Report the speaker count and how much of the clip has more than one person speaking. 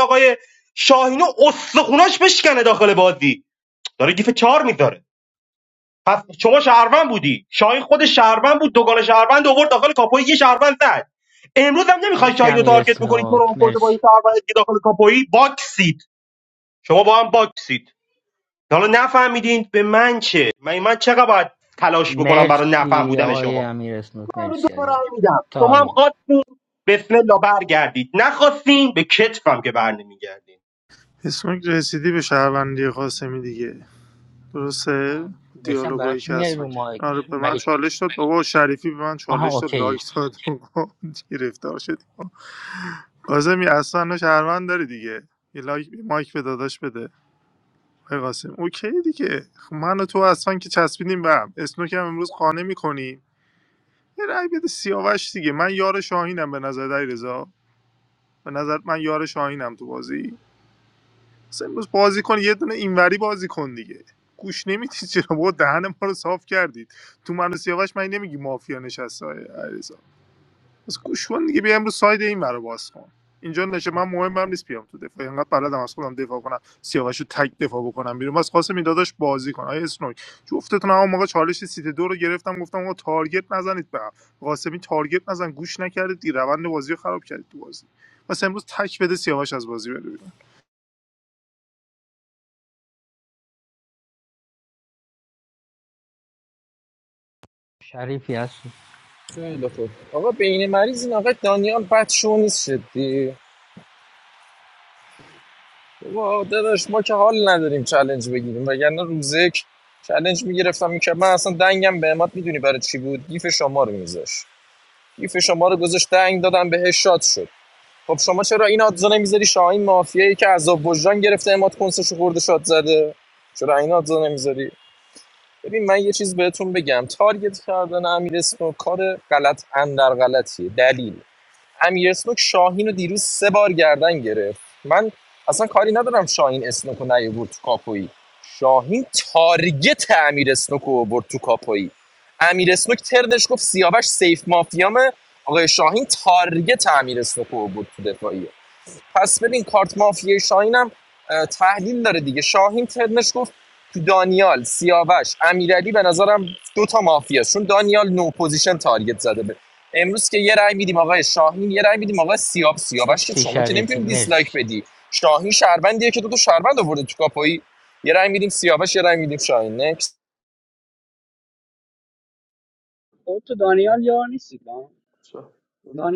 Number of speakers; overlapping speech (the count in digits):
5, about 5%